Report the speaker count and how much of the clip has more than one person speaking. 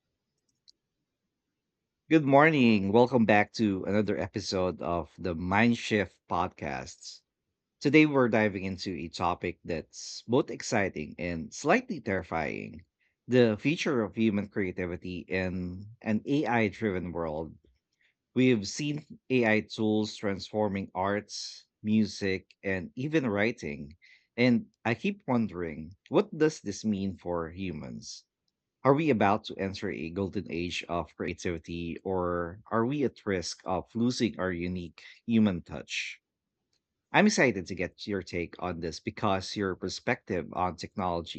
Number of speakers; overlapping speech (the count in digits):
1, no overlap